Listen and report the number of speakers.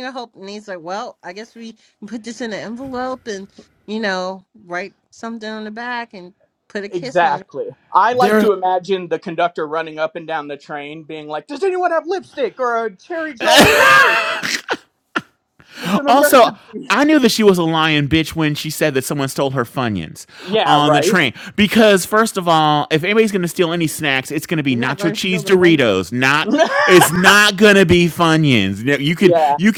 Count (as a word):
three